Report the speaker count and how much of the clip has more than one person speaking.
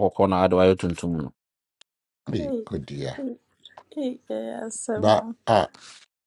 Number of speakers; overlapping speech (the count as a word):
three, about 9%